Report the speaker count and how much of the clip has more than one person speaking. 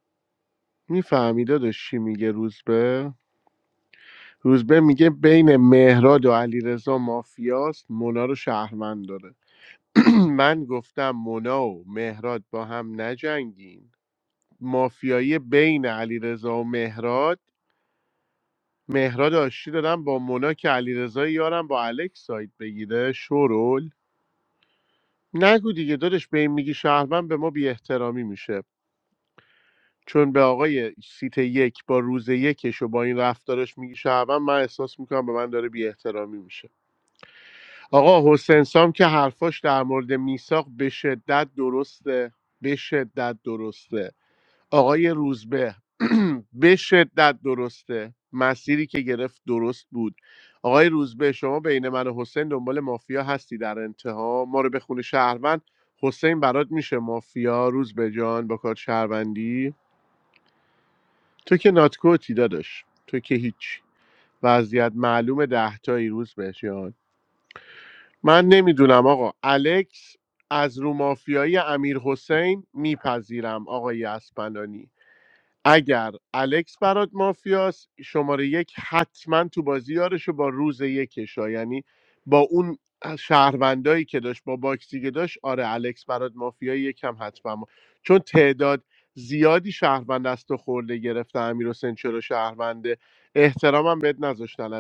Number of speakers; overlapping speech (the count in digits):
1, no overlap